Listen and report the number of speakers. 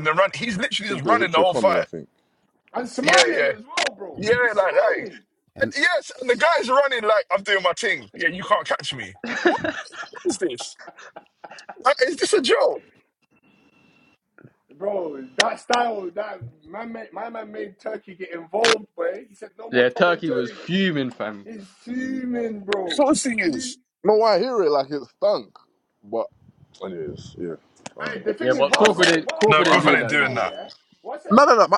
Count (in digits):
4